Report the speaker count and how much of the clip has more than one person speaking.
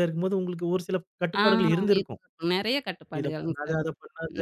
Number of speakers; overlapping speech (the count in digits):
2, about 17%